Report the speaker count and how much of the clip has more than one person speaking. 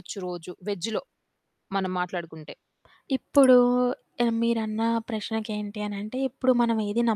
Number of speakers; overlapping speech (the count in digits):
2, no overlap